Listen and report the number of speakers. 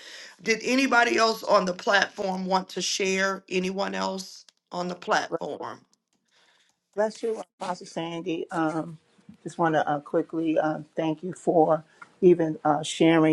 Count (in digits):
2